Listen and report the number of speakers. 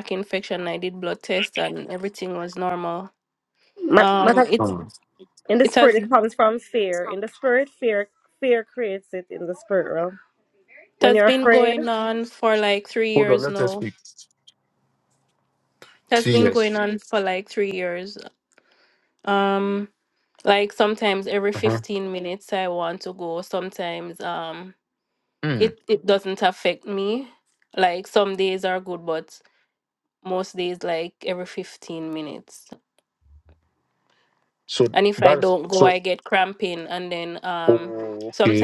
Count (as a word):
three